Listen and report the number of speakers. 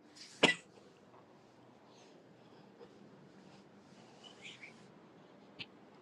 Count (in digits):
0